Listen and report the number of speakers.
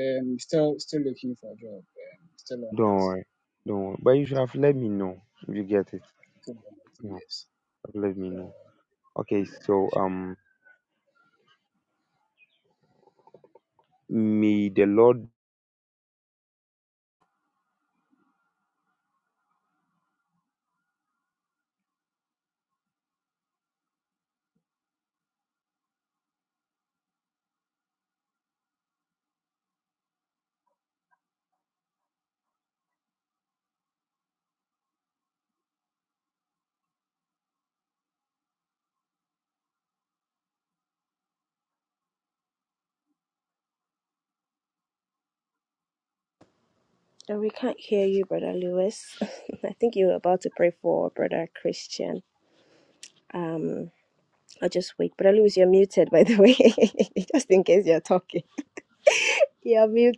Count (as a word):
three